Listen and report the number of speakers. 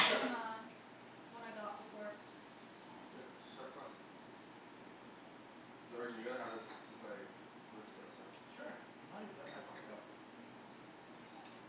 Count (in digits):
3